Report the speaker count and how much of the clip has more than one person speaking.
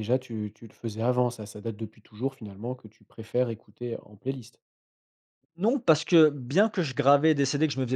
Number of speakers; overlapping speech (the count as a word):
two, no overlap